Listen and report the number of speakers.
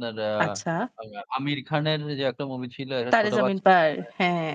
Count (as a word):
two